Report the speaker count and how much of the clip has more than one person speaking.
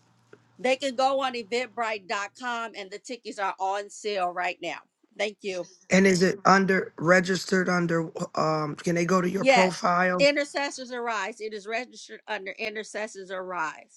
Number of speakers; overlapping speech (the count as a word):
two, about 3%